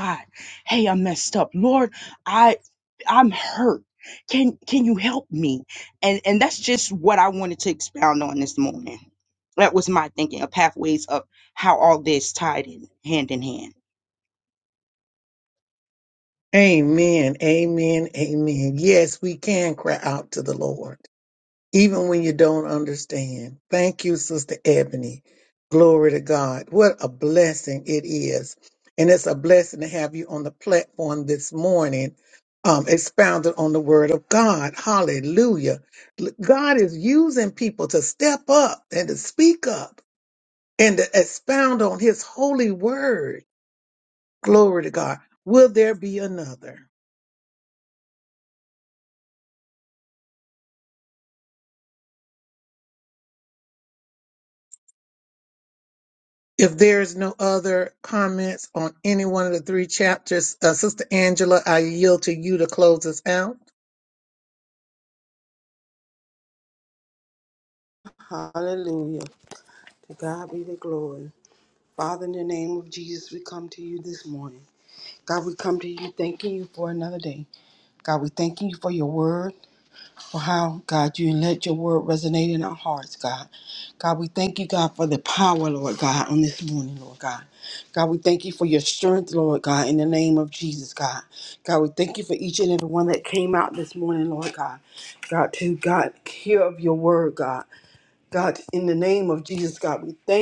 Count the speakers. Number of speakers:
3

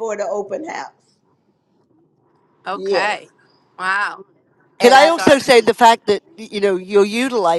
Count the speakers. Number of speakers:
3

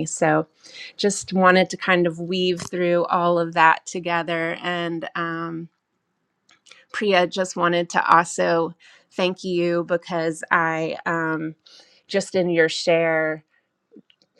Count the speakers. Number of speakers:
1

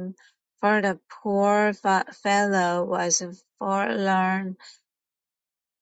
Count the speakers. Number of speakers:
1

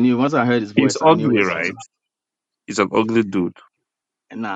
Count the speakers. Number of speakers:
2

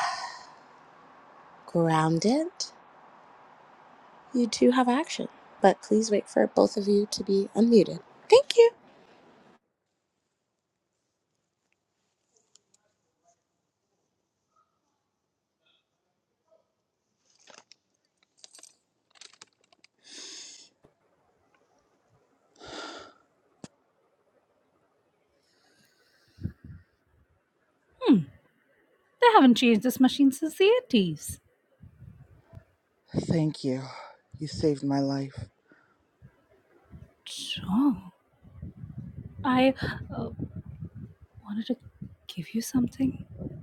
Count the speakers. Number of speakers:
3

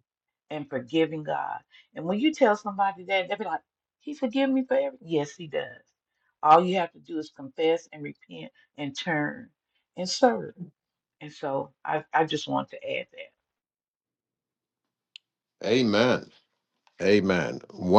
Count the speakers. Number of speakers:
2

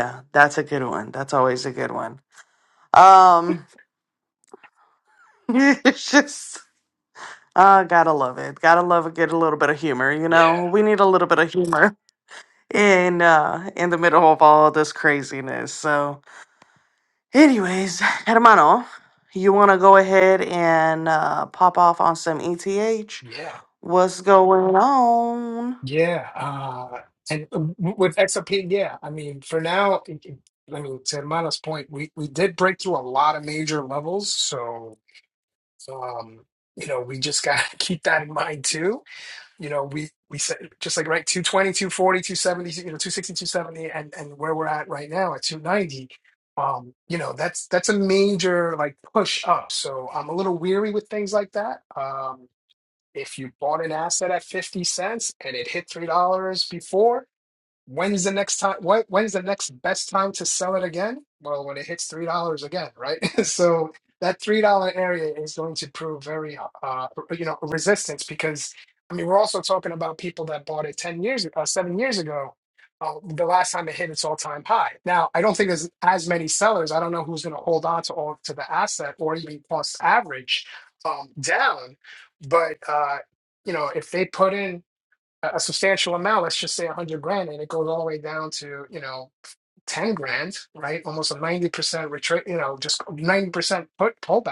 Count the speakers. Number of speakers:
2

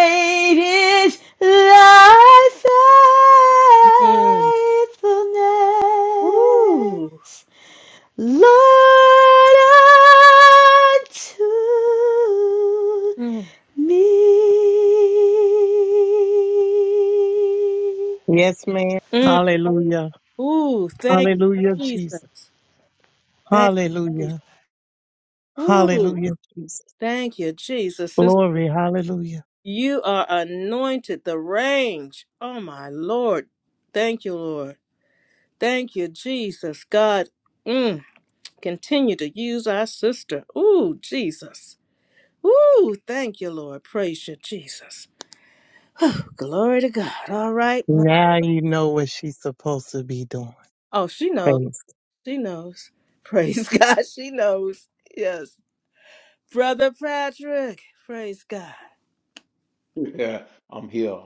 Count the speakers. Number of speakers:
4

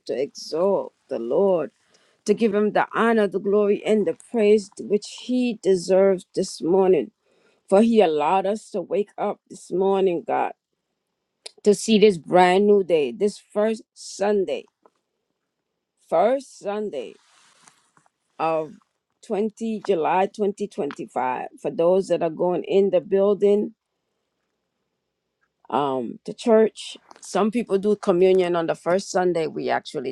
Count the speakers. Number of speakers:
1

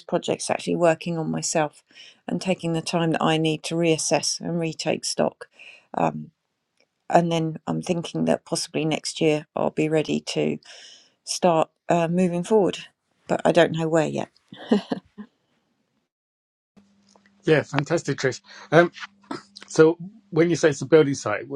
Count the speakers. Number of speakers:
2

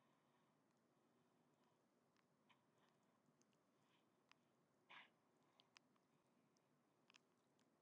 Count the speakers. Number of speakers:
0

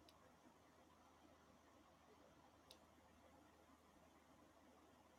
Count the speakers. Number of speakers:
0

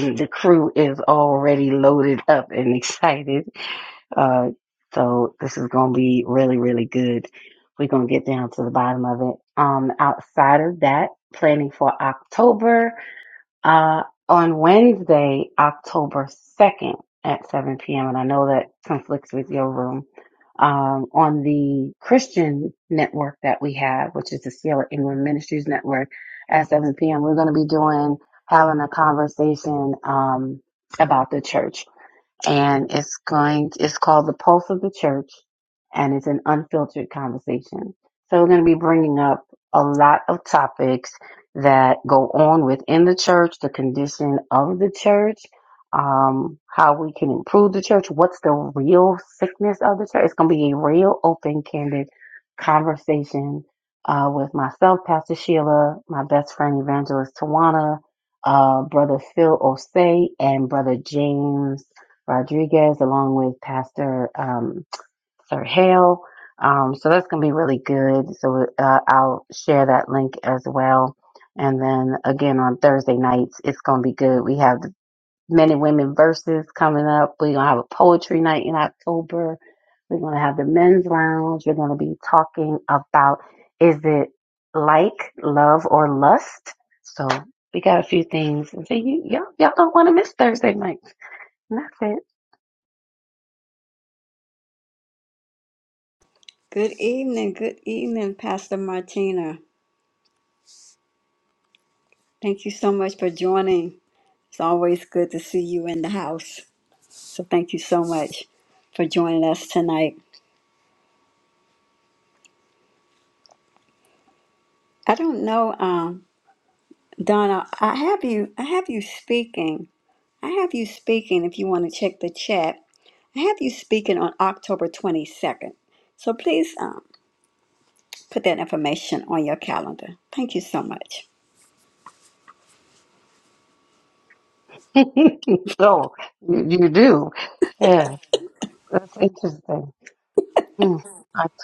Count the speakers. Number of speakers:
2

